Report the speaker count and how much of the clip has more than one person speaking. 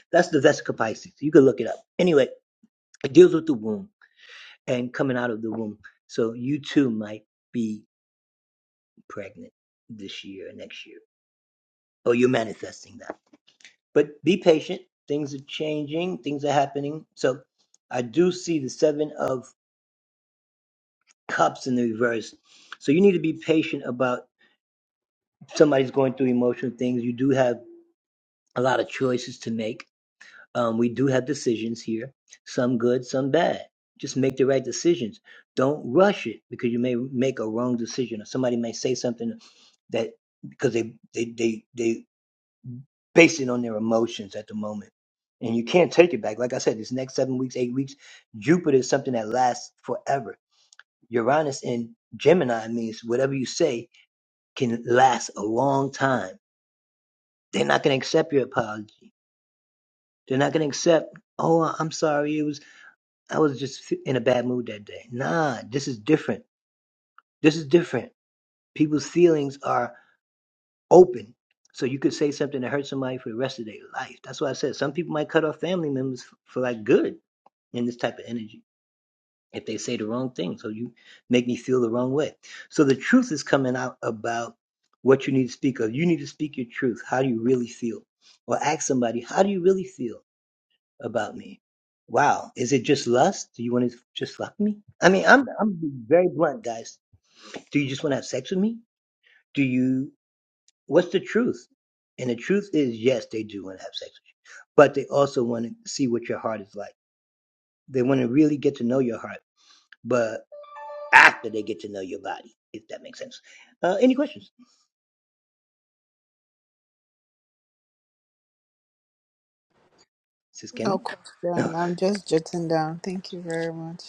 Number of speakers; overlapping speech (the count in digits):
2, under 1%